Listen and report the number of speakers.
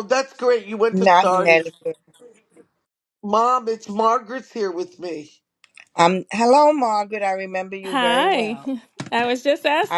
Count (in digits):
3